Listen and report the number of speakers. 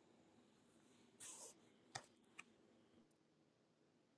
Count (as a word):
zero